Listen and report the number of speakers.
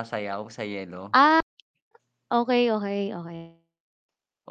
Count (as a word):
two